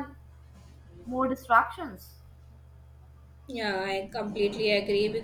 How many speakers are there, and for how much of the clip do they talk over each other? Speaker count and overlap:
two, no overlap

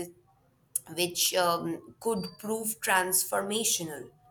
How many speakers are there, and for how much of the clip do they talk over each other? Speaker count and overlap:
one, no overlap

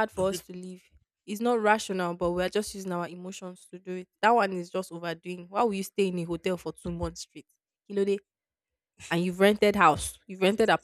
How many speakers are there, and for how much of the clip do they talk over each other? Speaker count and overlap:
one, no overlap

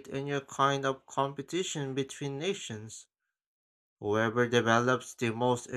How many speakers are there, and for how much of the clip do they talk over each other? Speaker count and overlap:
one, no overlap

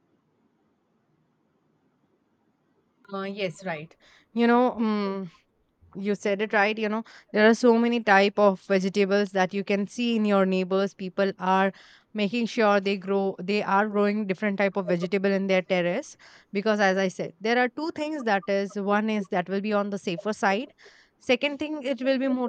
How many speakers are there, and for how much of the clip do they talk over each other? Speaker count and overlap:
one, no overlap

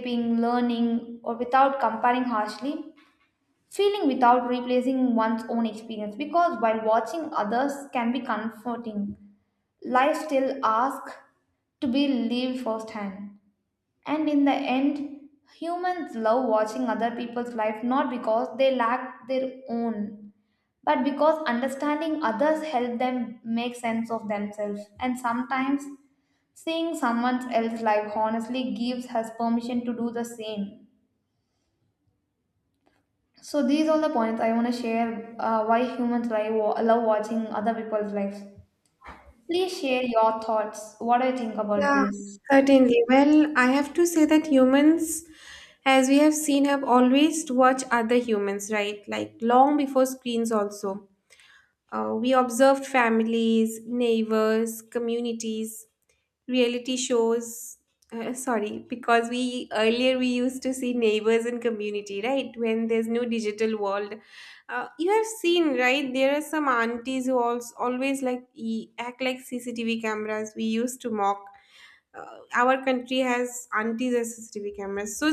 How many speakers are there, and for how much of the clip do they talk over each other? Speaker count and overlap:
two, under 1%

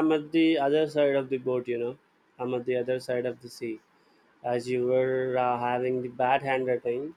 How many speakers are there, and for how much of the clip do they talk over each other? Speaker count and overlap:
one, no overlap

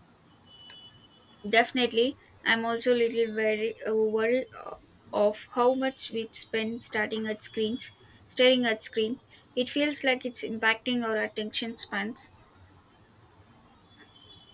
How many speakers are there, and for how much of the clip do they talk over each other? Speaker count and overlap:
one, no overlap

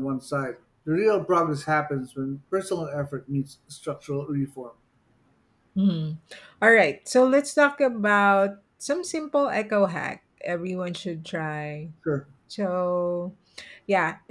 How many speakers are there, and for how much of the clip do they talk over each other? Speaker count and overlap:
two, no overlap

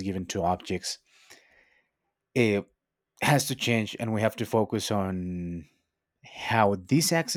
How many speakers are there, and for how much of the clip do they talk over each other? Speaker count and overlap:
one, no overlap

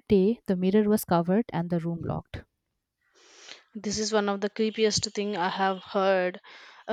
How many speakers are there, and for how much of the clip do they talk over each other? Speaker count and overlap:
two, no overlap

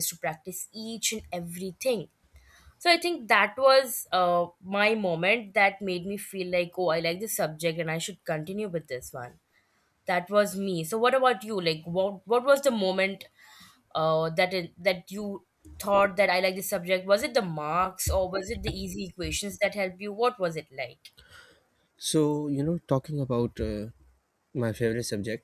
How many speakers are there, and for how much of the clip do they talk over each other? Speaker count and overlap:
two, no overlap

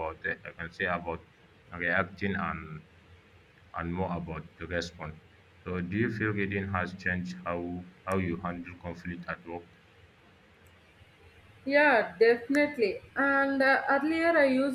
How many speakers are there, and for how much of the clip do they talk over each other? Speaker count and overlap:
two, no overlap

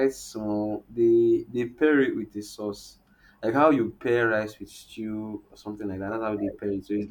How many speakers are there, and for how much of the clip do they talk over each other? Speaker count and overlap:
one, no overlap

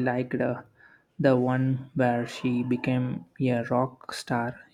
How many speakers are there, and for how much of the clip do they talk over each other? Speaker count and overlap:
one, no overlap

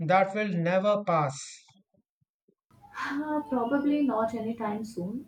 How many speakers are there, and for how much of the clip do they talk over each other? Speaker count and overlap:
two, no overlap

